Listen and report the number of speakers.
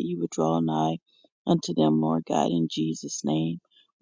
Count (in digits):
1